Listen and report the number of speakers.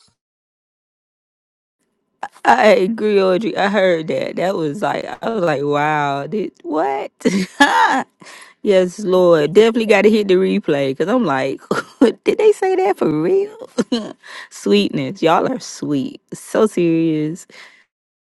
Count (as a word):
one